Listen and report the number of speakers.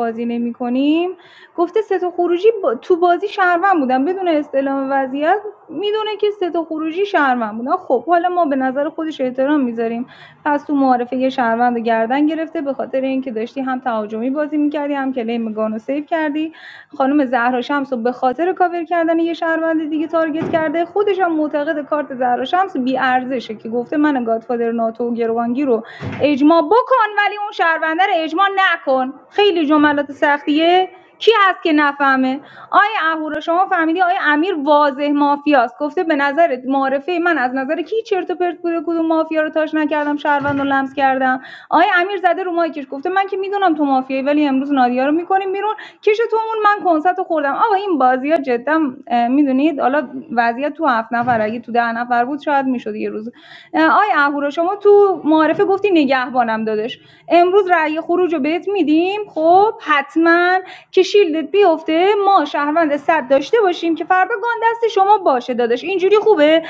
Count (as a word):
one